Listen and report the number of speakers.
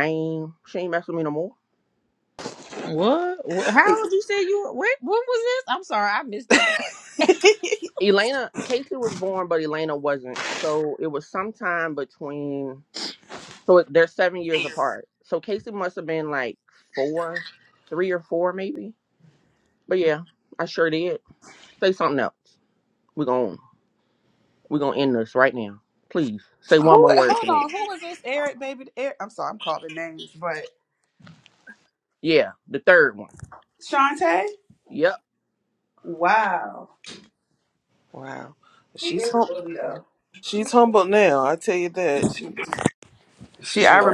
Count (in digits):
4